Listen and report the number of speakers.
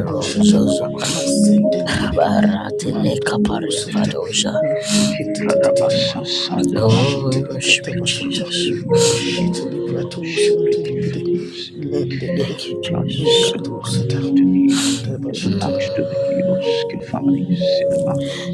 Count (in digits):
3